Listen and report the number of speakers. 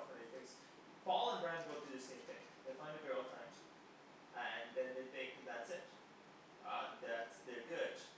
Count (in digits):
1